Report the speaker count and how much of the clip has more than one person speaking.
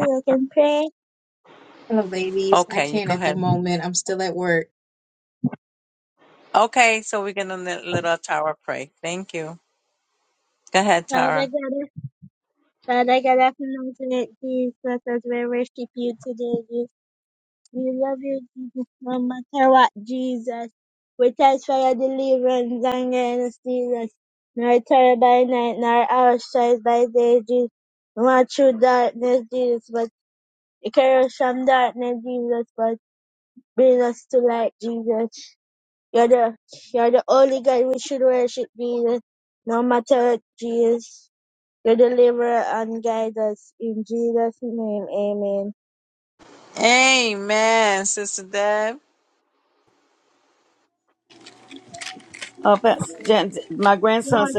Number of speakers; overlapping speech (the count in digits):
4, about 2%